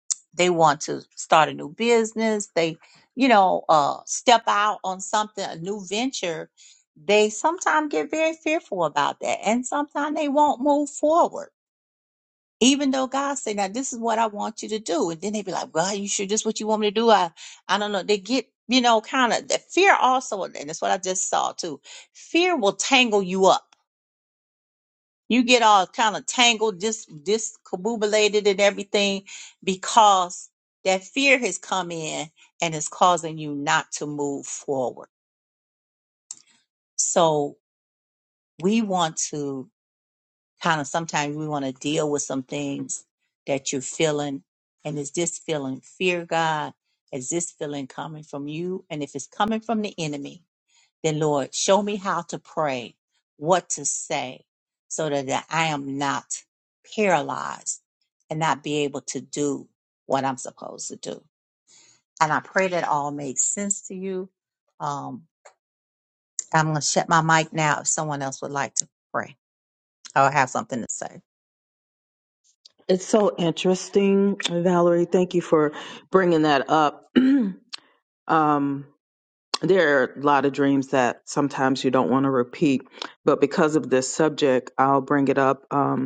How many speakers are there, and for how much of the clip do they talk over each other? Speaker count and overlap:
2, no overlap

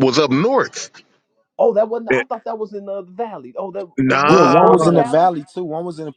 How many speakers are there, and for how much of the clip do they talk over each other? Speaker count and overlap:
3, about 24%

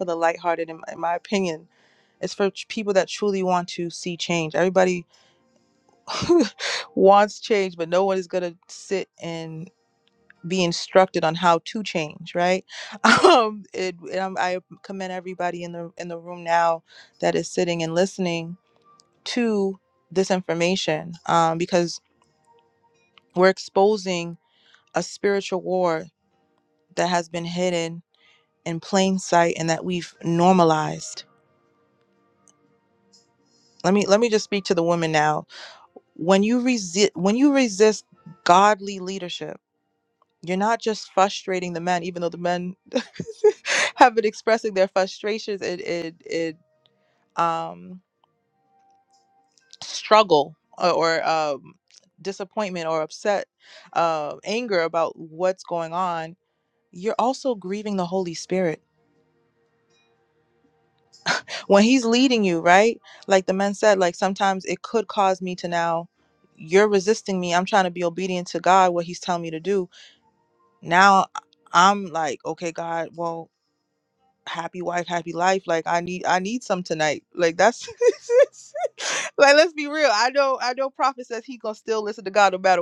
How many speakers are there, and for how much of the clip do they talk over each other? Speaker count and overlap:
1, no overlap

